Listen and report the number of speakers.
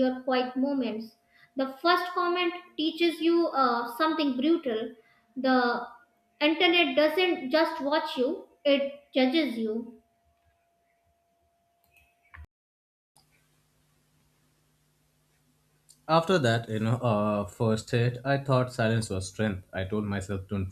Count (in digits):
2